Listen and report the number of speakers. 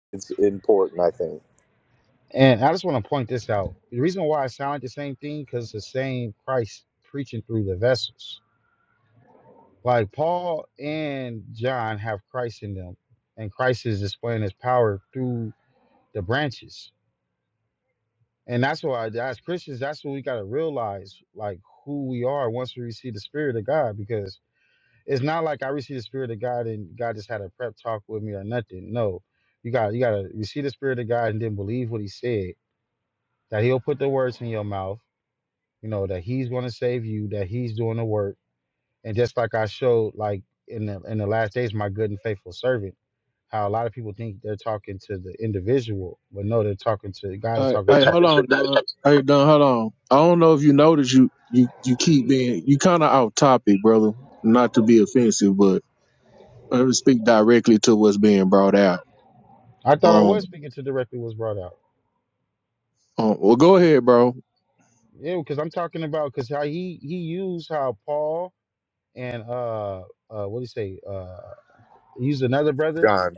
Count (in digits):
3